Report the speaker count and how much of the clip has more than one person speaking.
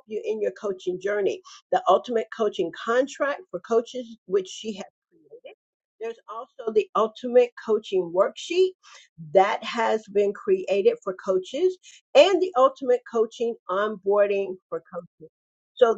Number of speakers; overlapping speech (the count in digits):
1, no overlap